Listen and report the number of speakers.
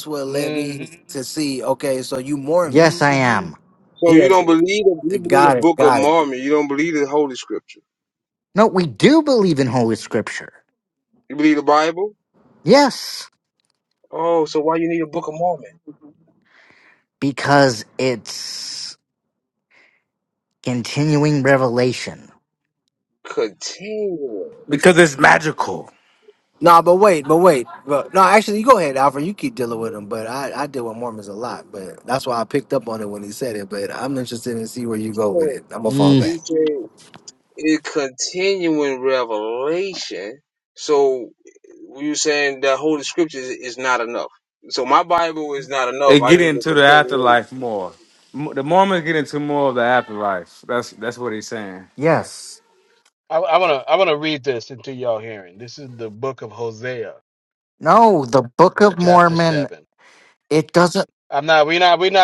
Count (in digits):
5